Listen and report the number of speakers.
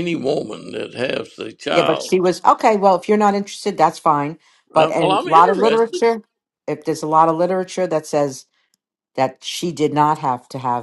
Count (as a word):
two